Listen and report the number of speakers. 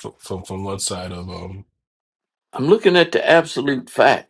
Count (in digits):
2